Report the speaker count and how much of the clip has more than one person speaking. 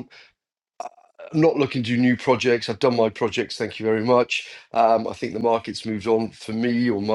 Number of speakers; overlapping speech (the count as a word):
one, no overlap